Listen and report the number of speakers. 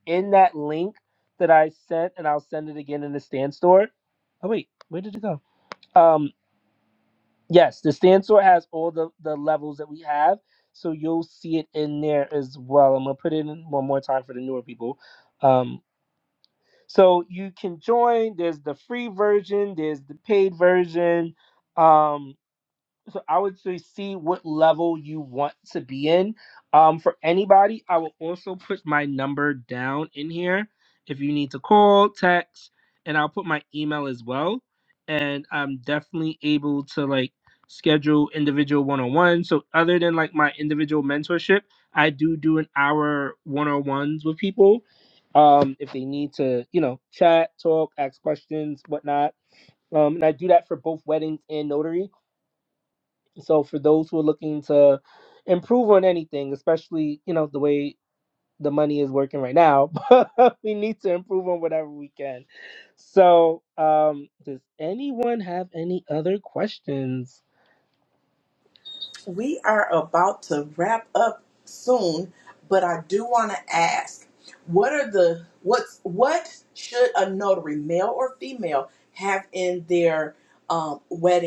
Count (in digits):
2